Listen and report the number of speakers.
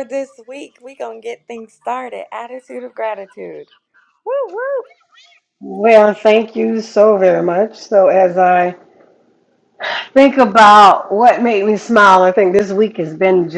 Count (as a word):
two